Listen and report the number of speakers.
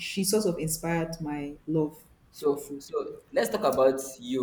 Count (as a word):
two